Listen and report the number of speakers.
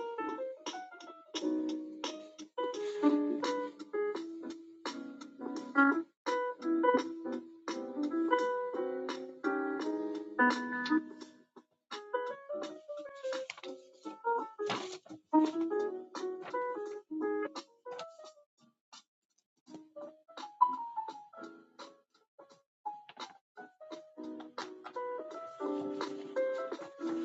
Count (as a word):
zero